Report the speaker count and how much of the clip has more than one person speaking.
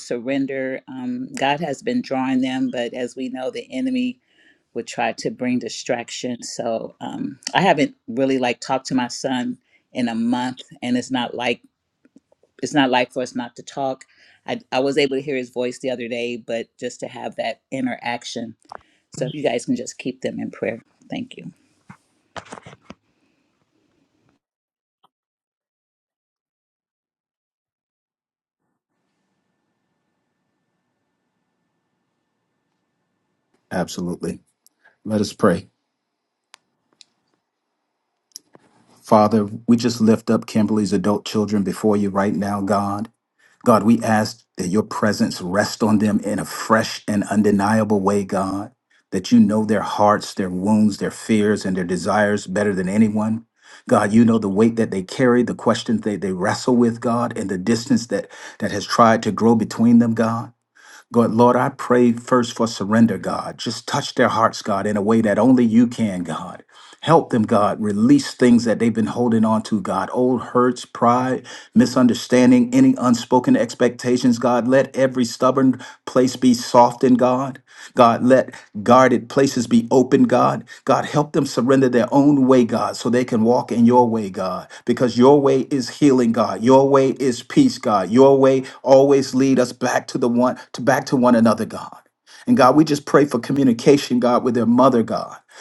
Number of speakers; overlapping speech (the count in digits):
2, no overlap